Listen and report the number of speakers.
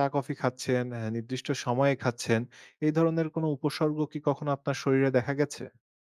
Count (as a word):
one